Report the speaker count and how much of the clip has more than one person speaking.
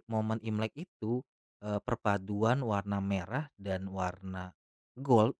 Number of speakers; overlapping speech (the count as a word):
one, no overlap